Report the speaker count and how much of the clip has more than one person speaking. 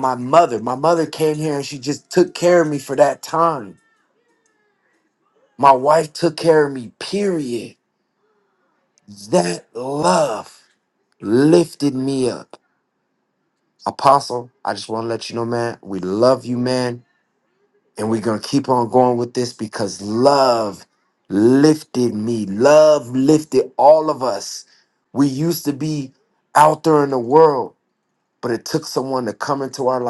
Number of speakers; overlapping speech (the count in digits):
1, no overlap